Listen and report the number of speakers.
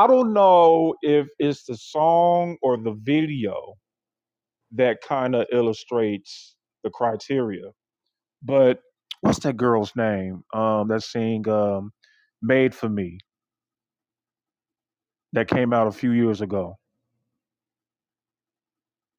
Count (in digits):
1